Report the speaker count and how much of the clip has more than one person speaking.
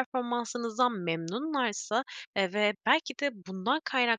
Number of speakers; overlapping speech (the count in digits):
1, no overlap